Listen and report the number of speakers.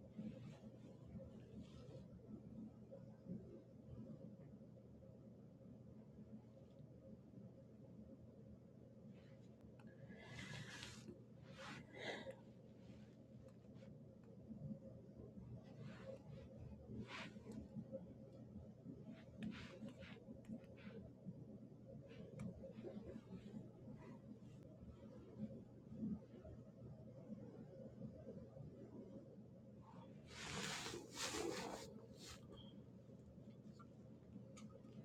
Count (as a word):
zero